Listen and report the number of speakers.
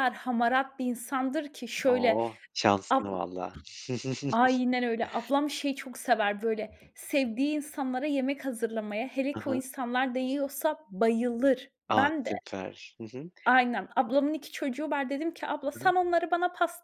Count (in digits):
2